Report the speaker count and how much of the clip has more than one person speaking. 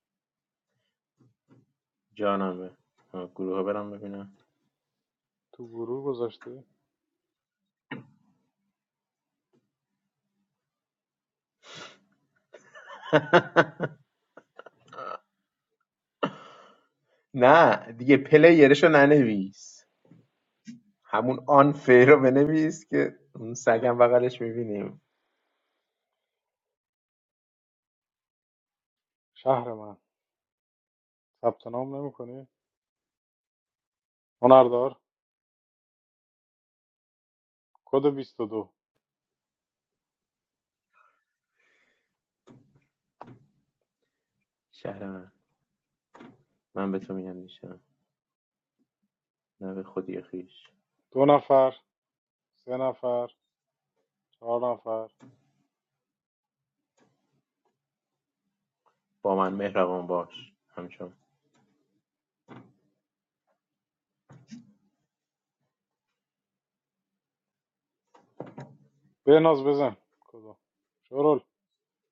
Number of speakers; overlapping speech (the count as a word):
two, no overlap